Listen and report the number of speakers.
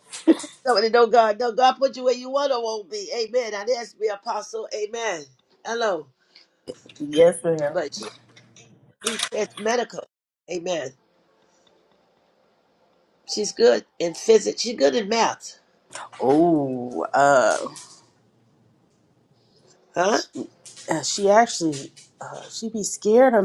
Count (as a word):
two